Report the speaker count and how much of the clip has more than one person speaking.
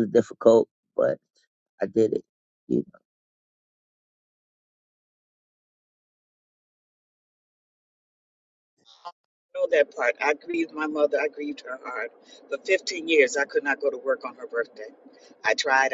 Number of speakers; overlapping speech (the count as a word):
two, no overlap